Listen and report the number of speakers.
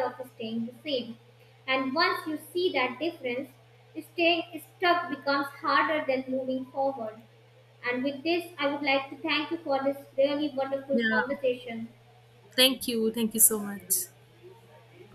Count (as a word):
two